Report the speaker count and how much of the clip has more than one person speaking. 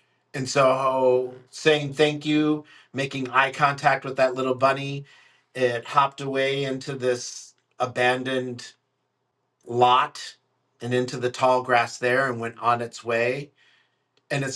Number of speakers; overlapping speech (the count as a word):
one, no overlap